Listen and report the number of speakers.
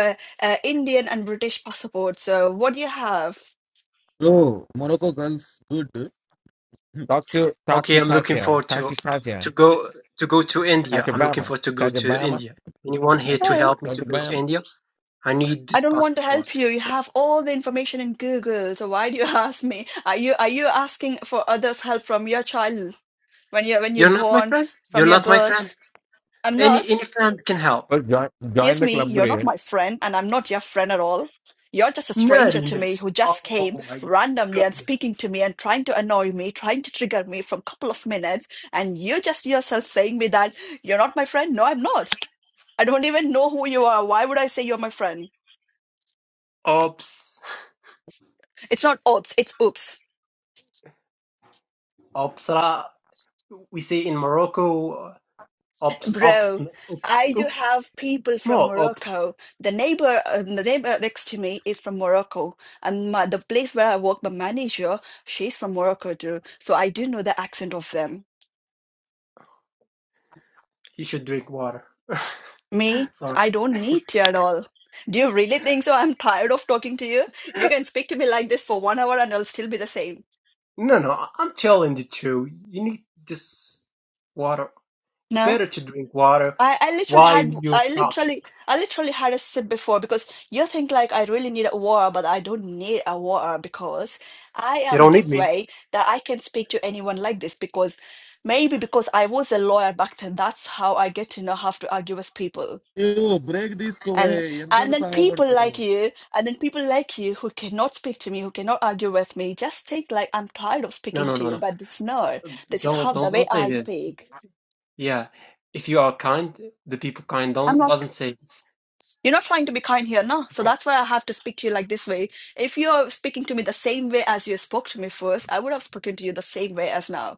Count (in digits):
4